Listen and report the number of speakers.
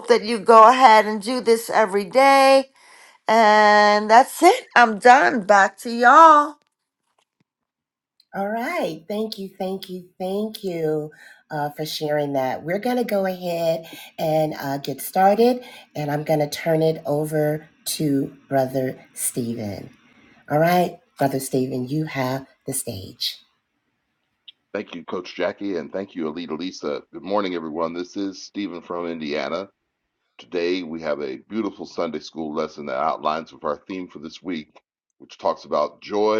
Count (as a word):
three